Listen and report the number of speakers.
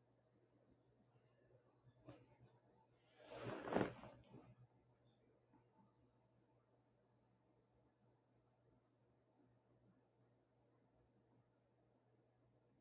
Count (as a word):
zero